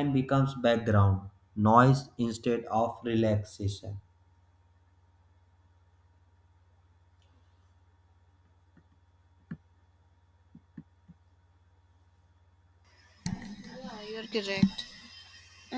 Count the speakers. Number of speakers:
2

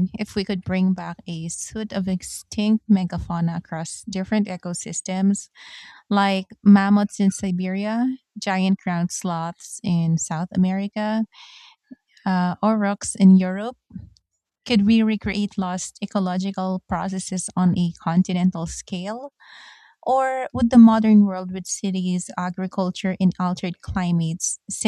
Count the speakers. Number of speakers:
1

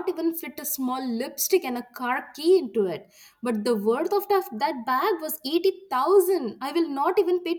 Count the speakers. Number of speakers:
1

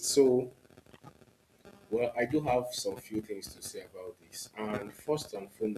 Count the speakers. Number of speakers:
1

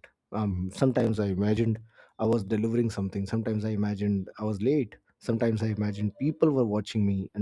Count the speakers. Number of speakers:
1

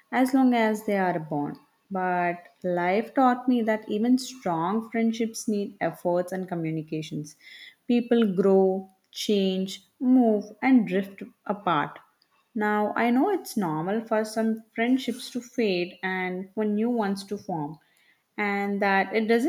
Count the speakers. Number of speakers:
1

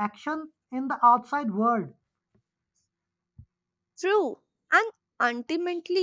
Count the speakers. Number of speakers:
2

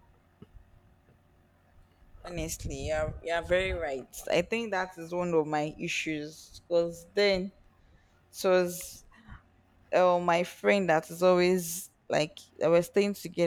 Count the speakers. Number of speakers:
1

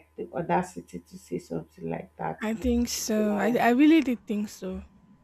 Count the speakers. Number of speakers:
2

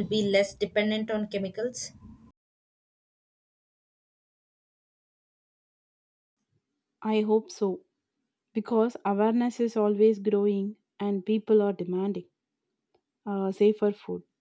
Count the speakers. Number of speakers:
2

